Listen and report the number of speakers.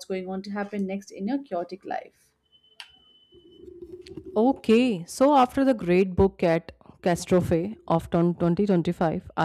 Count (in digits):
2